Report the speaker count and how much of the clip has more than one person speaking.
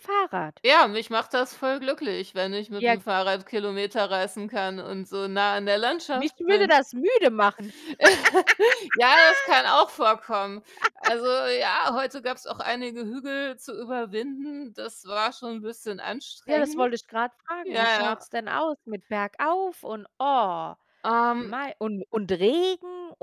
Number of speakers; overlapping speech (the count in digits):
2, about 8%